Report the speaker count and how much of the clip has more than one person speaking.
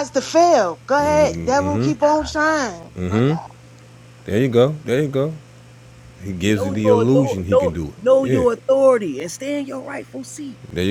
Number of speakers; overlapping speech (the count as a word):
three, about 23%